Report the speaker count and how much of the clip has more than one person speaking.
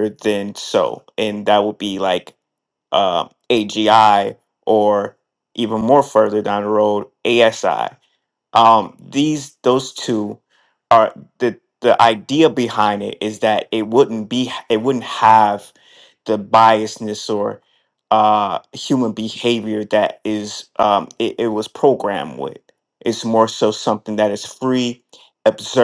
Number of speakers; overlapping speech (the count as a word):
one, no overlap